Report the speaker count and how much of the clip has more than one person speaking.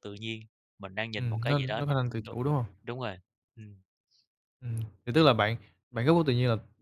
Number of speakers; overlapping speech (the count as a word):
two, about 12%